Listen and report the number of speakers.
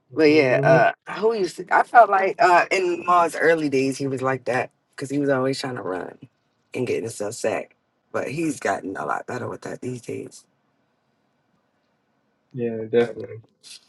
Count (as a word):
two